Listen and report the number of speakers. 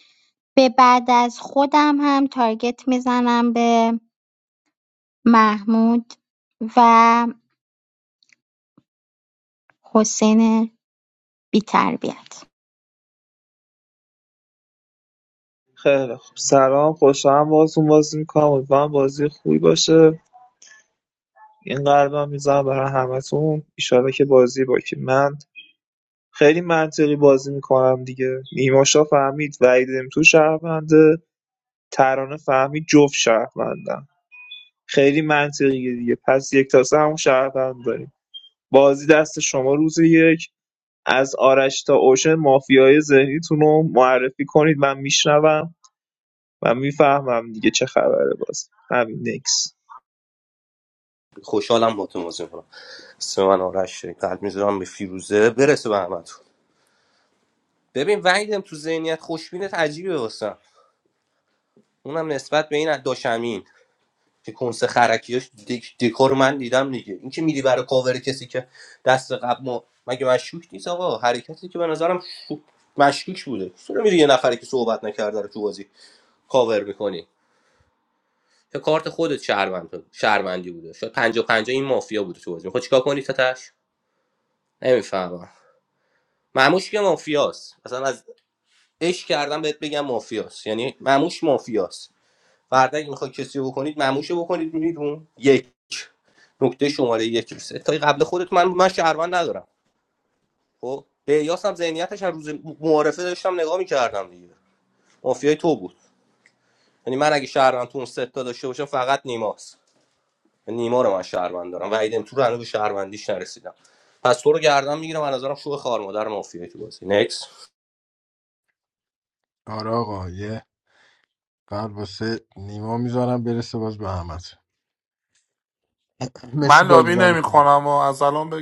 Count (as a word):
five